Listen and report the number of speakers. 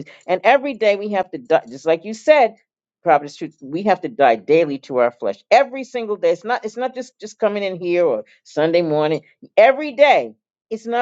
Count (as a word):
one